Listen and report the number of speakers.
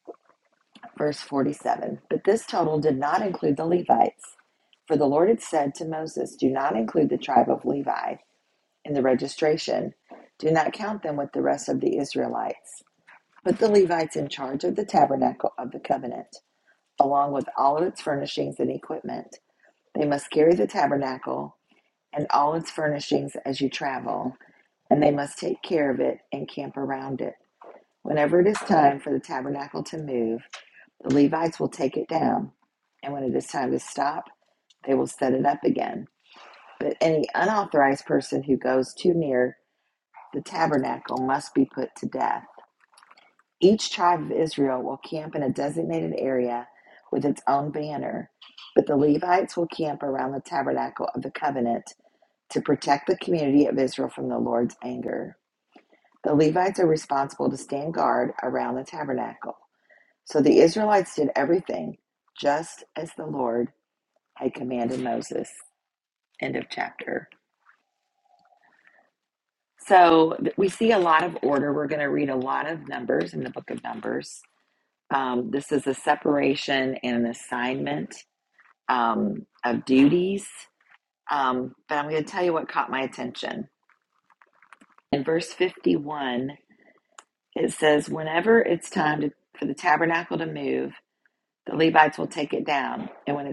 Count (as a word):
one